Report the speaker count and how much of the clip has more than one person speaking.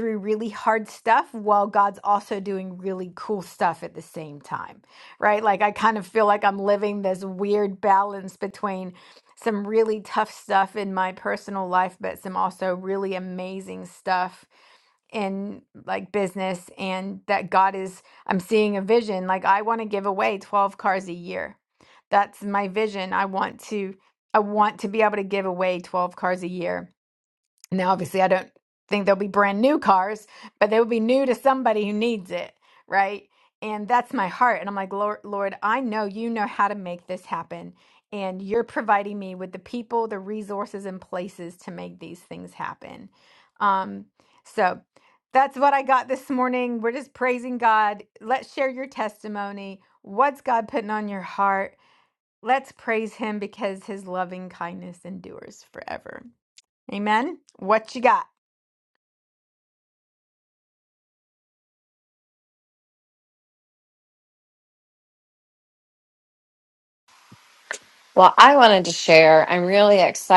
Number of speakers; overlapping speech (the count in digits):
2, no overlap